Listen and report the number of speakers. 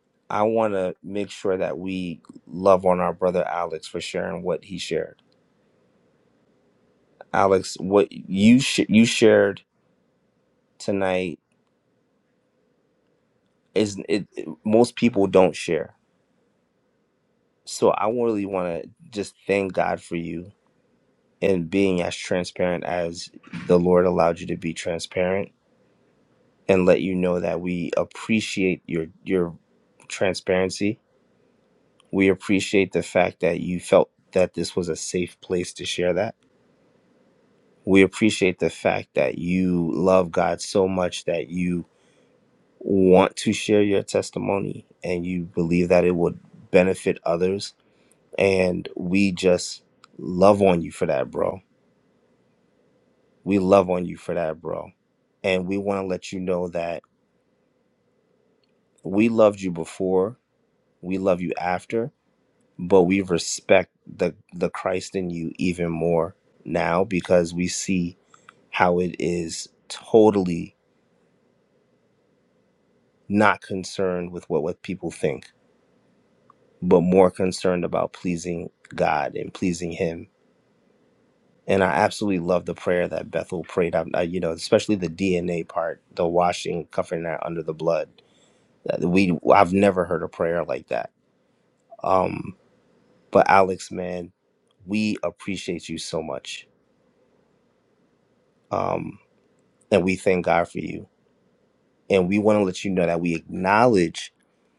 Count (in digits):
1